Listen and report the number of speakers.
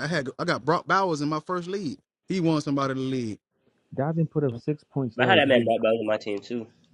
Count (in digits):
3